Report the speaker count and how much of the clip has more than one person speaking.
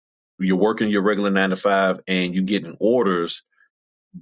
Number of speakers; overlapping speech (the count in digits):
1, no overlap